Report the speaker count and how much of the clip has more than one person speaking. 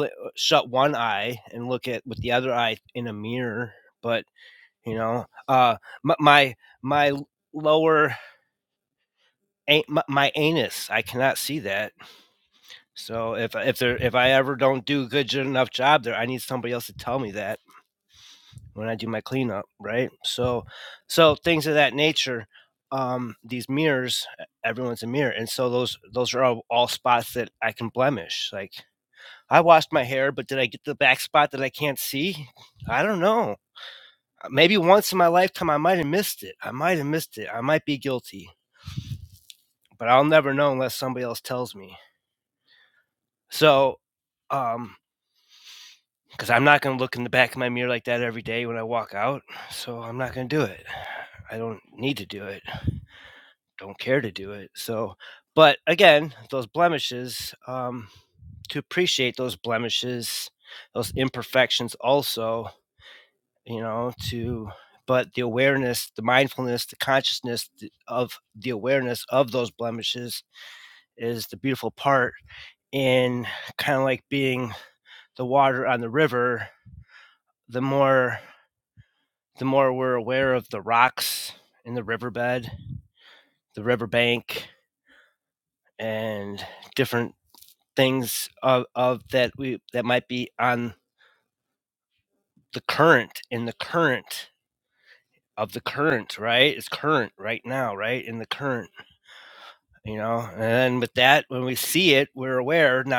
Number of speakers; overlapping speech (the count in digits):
1, no overlap